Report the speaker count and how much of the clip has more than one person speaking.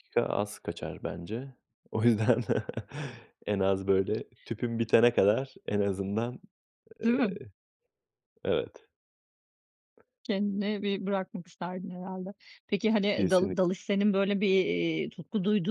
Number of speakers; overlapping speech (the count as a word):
two, about 4%